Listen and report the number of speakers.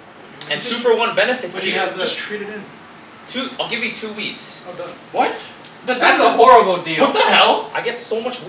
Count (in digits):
4